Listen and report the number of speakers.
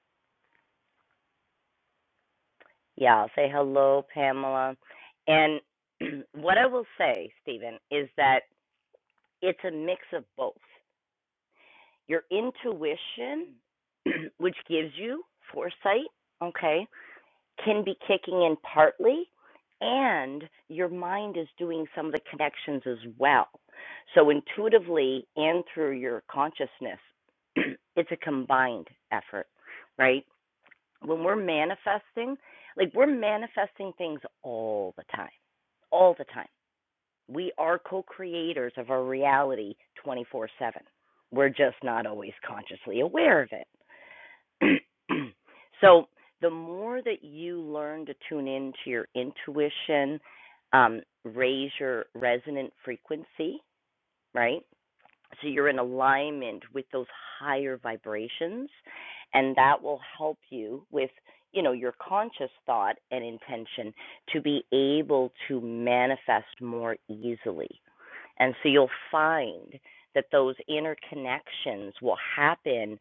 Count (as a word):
one